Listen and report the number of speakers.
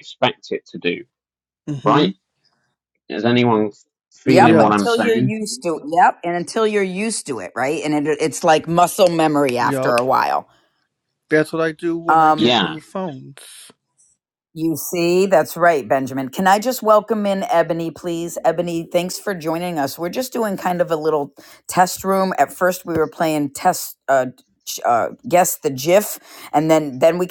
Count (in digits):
3